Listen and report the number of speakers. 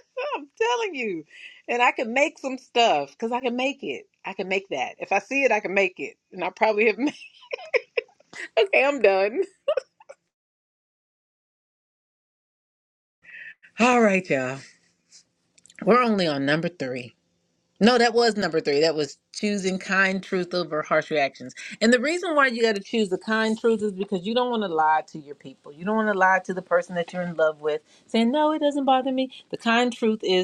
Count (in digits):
1